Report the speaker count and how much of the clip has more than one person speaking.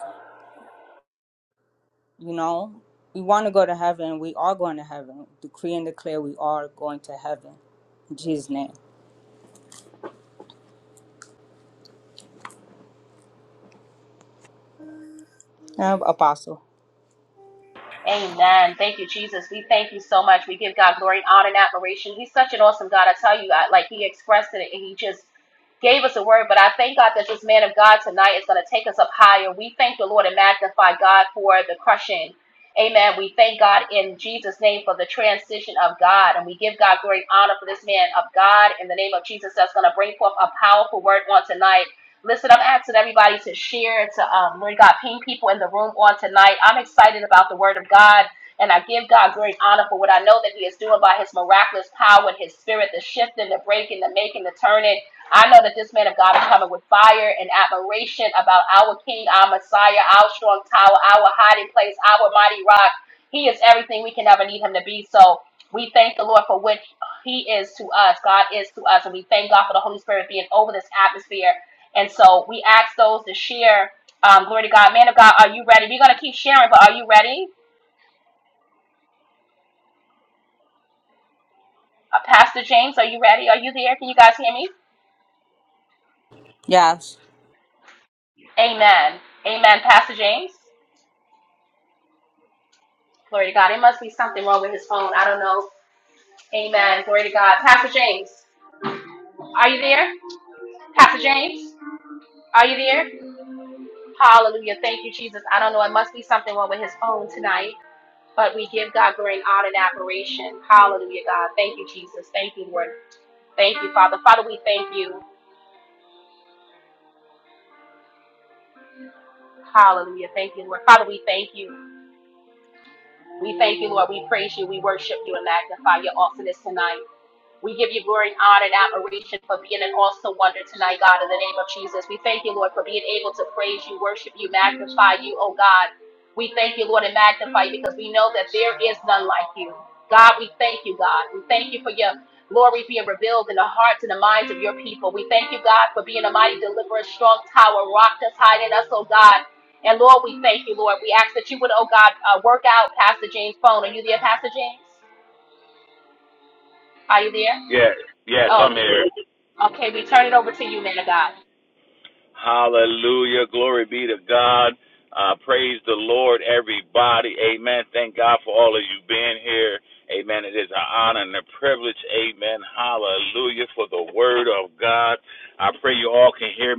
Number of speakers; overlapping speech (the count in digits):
3, under 1%